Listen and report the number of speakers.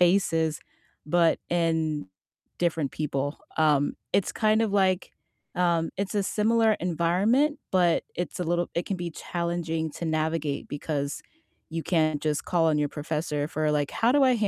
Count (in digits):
1